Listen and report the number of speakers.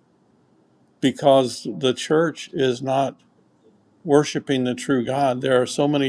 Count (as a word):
one